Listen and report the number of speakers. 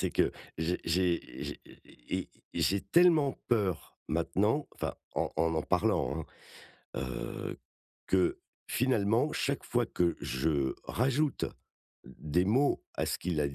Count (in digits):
1